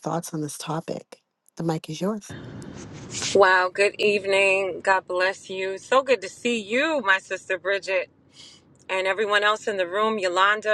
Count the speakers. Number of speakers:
2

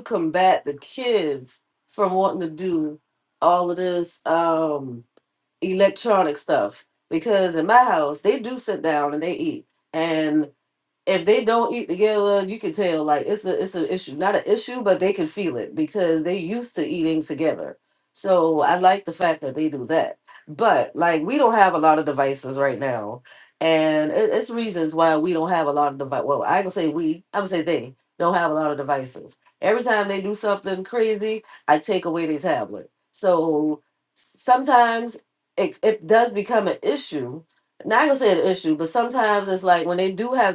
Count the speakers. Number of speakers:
1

